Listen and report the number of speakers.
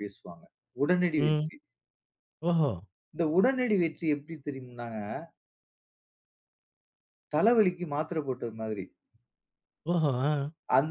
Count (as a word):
two